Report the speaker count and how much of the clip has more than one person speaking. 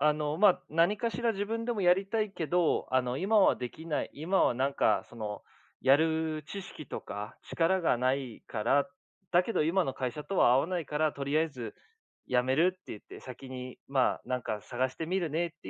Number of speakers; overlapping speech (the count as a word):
one, no overlap